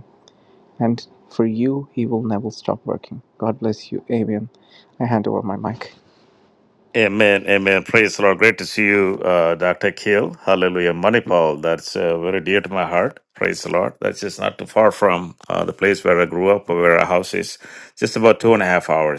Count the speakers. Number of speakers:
2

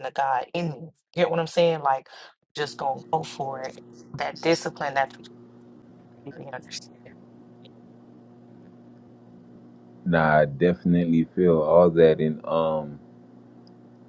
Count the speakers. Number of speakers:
2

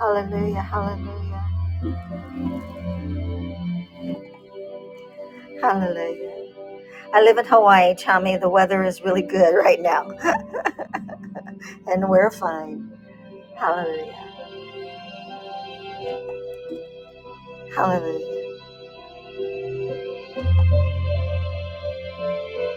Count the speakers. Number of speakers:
1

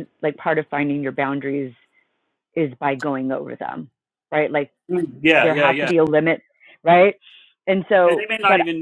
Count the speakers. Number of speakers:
2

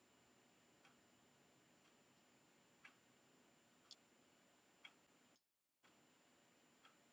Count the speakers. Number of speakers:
0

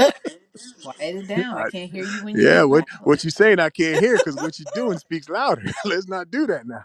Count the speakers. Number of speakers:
2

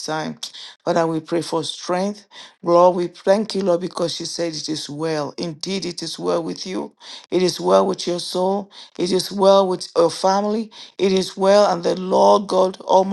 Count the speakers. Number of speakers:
1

